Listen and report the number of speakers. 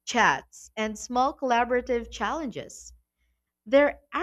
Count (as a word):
one